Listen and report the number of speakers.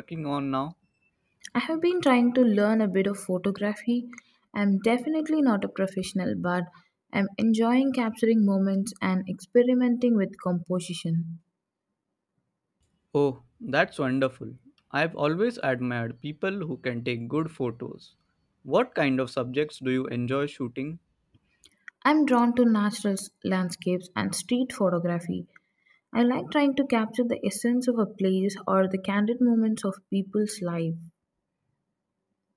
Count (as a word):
two